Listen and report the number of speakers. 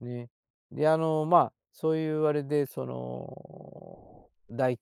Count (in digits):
1